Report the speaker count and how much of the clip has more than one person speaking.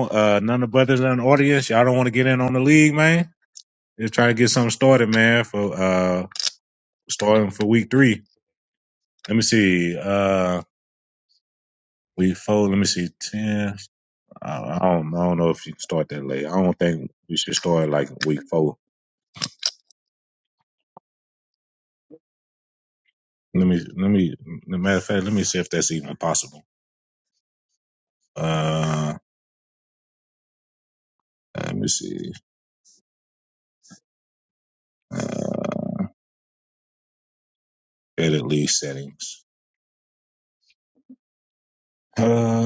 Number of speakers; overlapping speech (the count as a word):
one, no overlap